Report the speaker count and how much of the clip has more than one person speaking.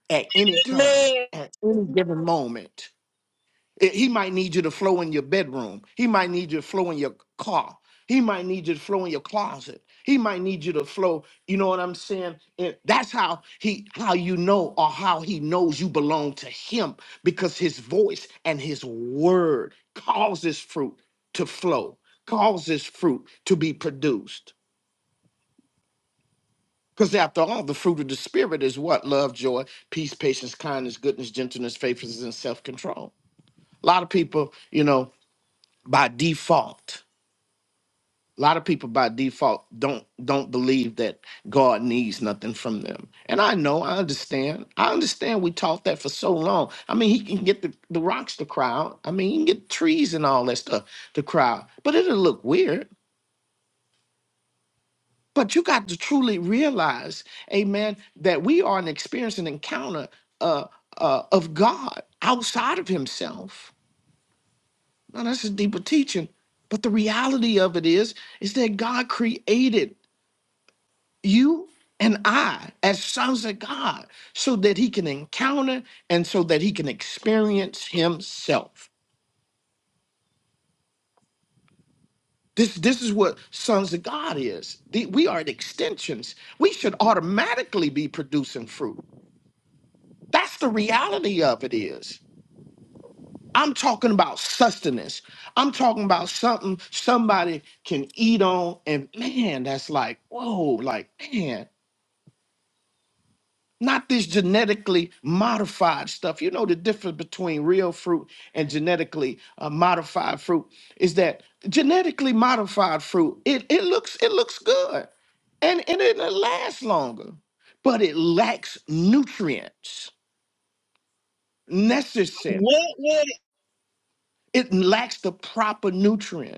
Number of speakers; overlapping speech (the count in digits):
2, about 1%